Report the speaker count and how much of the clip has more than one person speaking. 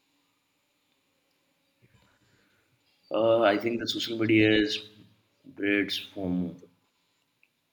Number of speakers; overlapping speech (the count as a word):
one, no overlap